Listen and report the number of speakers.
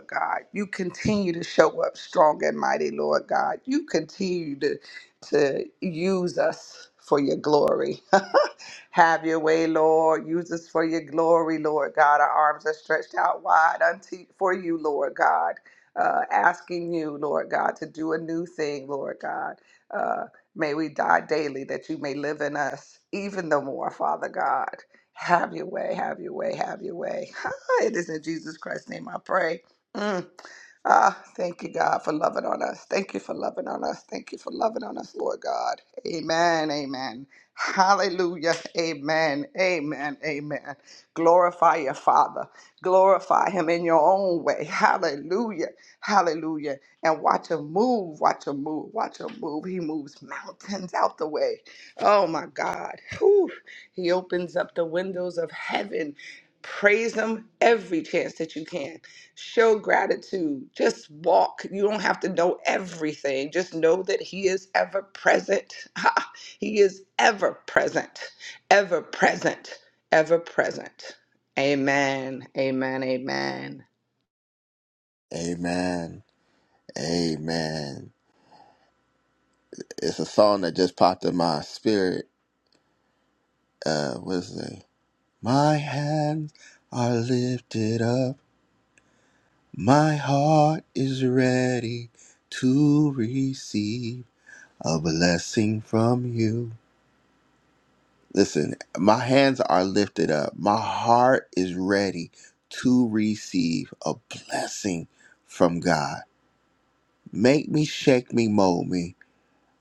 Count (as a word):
two